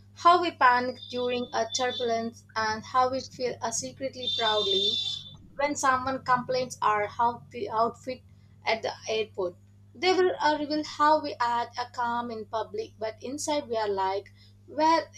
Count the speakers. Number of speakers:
1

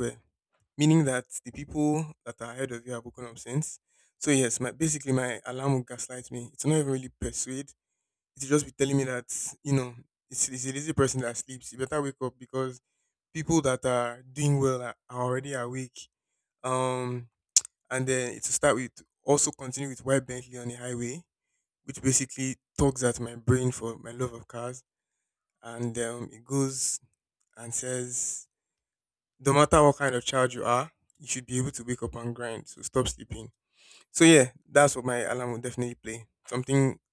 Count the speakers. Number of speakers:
1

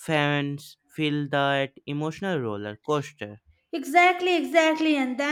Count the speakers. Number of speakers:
2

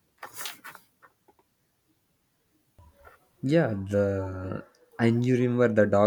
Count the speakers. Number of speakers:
1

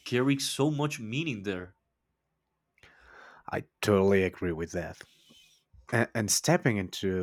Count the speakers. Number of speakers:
2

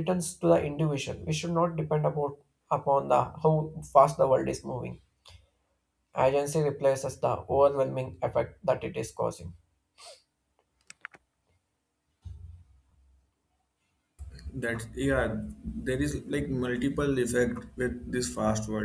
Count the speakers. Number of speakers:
2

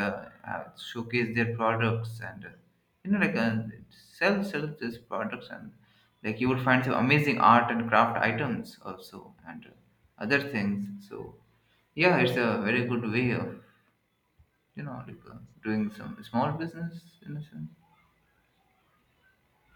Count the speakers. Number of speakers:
1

